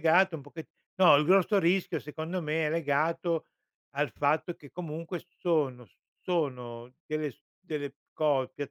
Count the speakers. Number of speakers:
one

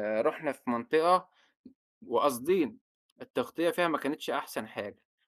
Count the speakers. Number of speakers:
one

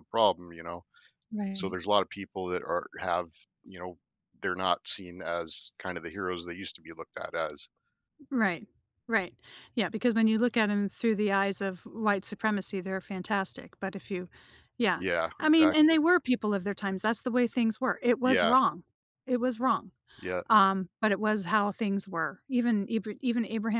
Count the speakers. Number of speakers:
two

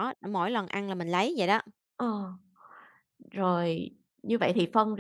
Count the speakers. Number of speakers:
two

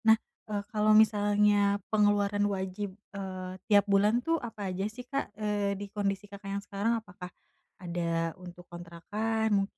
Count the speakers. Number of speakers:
one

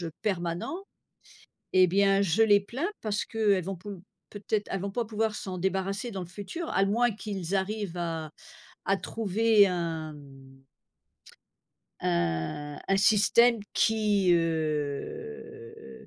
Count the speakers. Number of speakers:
one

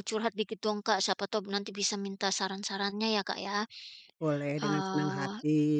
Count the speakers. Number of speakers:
two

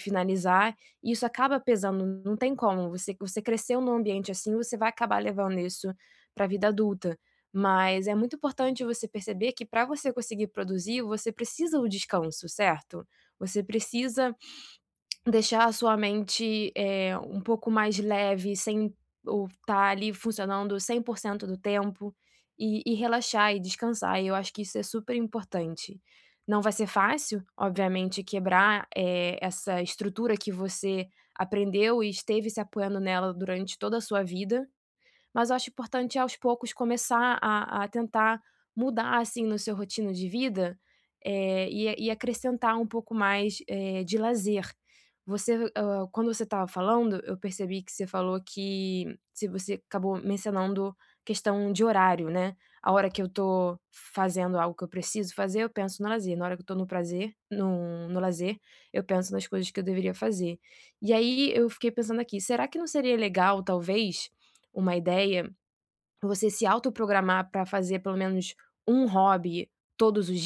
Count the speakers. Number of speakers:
one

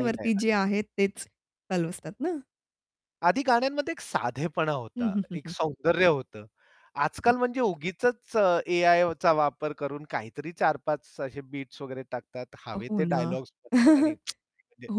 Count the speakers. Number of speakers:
two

